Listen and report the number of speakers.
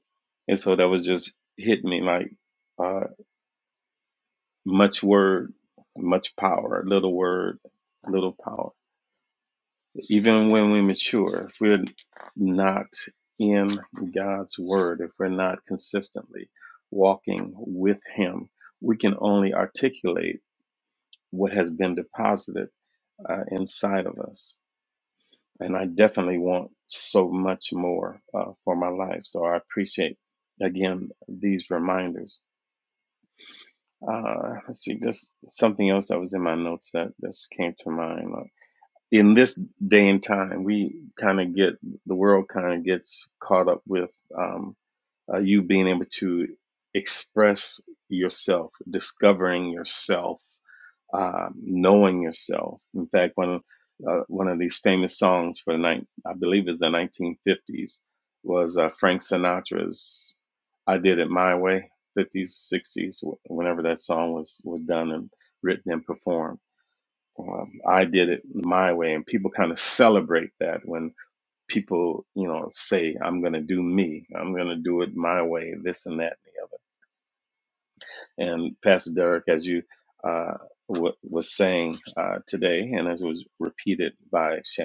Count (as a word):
one